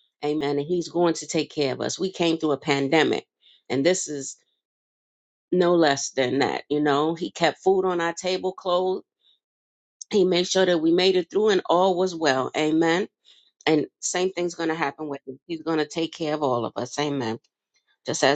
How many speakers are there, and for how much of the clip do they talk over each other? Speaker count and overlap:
1, no overlap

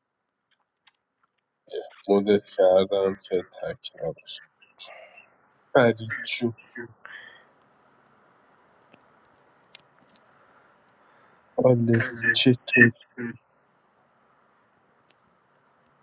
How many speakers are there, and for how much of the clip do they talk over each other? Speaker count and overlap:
1, no overlap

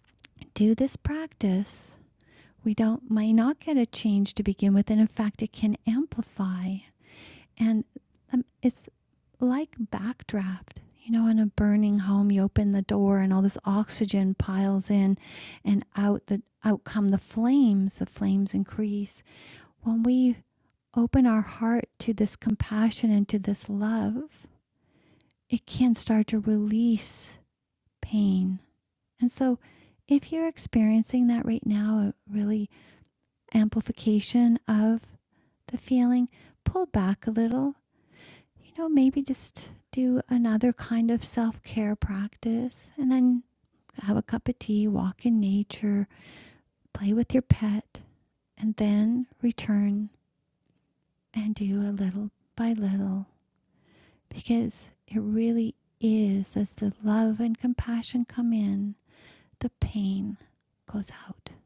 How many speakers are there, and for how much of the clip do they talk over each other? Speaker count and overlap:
1, no overlap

